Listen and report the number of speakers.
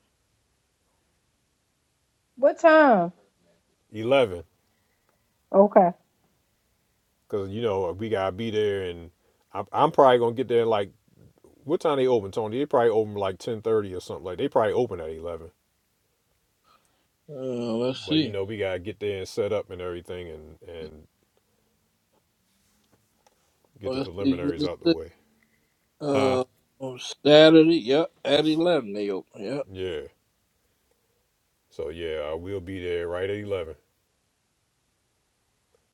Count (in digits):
3